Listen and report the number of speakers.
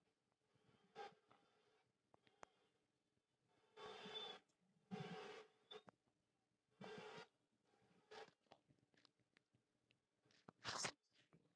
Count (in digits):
0